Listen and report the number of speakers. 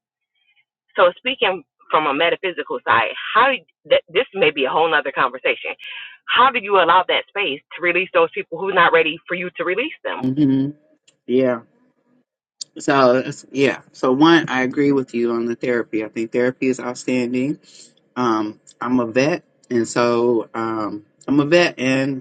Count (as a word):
two